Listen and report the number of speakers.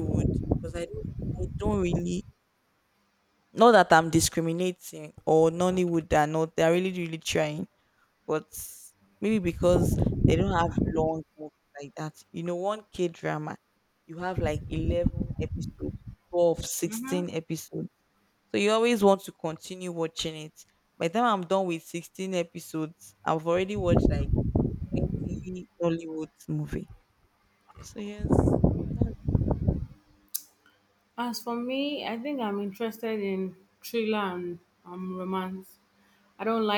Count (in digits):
2